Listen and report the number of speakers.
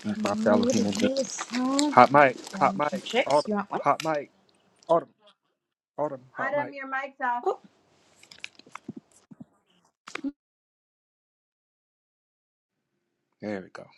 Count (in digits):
3